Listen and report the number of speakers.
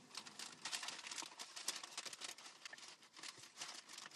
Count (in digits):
0